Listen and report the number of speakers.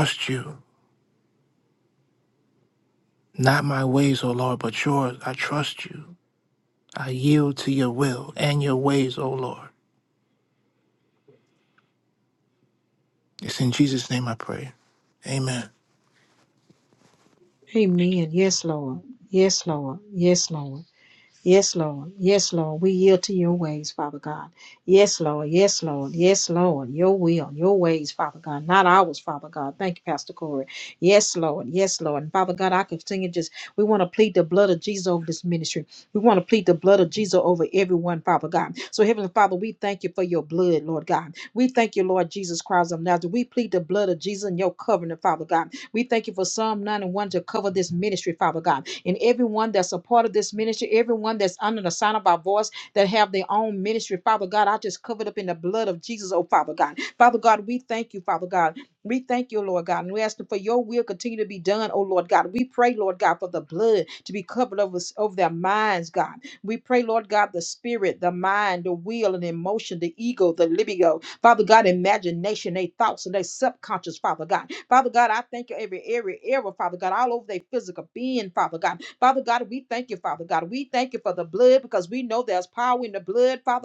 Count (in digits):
2